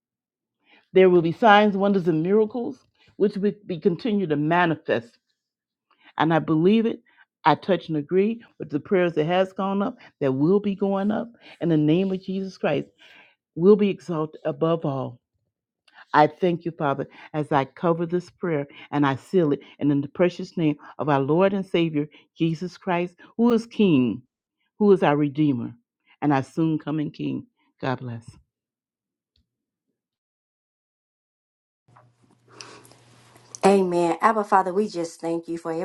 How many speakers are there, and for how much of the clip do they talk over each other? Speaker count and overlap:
two, no overlap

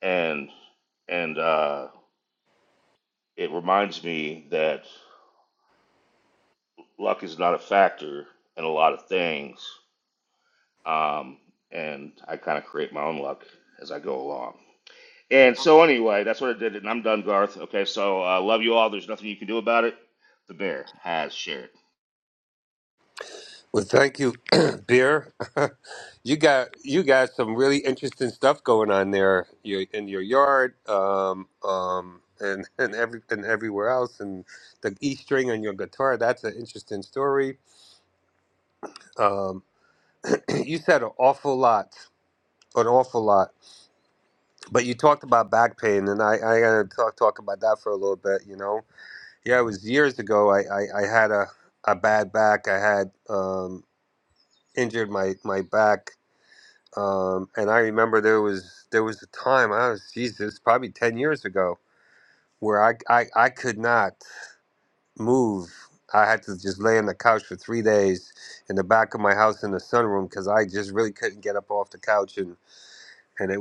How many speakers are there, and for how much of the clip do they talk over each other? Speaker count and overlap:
two, no overlap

